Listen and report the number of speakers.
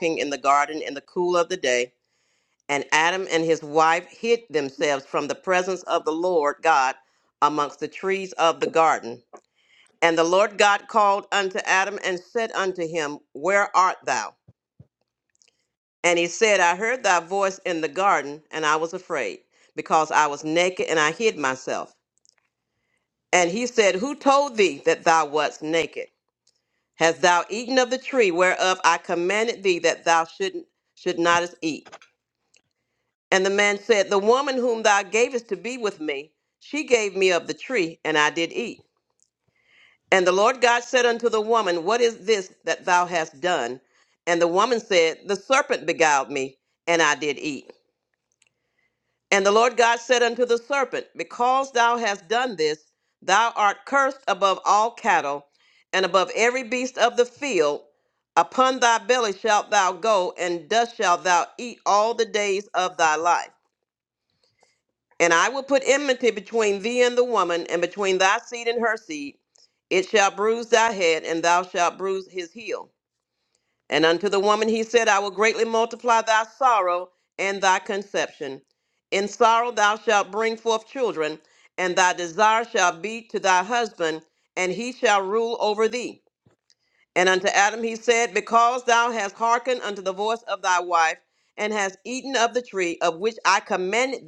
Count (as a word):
one